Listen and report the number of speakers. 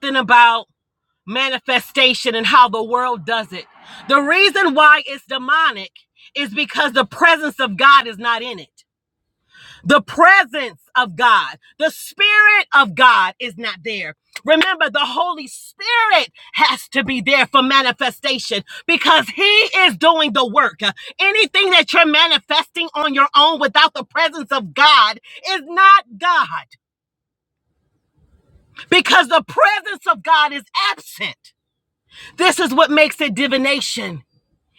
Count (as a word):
one